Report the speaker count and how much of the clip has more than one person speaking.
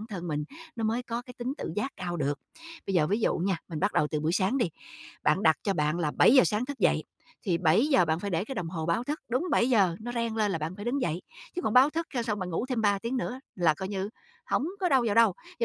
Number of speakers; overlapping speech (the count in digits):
1, no overlap